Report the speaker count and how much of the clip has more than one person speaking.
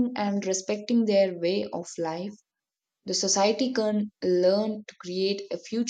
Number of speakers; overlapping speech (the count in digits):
1, no overlap